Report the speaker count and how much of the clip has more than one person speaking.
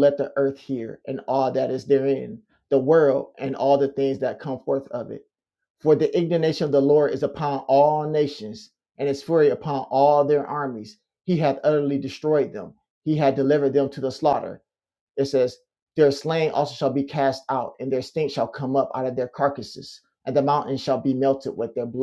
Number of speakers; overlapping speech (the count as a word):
one, no overlap